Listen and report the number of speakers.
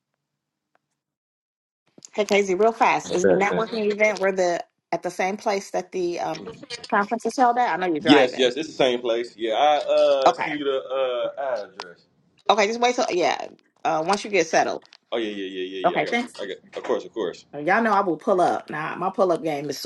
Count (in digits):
2